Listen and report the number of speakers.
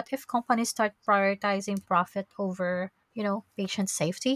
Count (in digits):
1